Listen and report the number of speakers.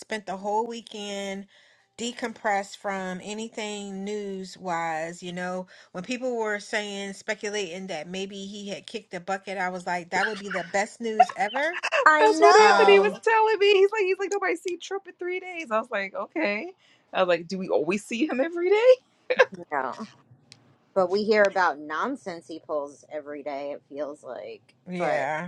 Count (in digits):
3